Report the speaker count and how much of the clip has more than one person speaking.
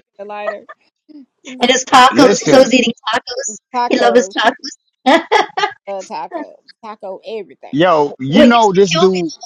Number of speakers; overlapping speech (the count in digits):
3, about 21%